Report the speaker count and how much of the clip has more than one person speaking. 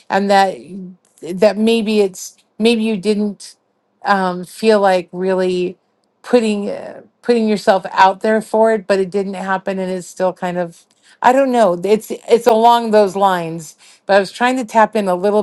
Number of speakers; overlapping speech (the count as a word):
one, no overlap